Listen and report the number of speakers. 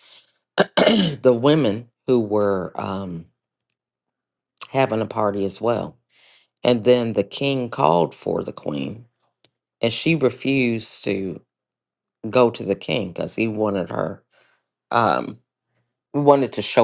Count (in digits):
1